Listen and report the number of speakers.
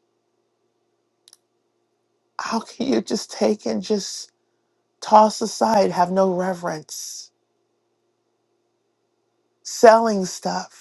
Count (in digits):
1